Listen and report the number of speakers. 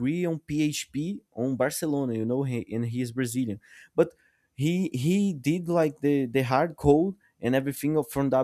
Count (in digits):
1